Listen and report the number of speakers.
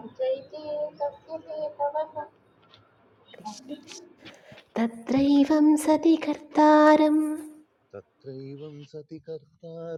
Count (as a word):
three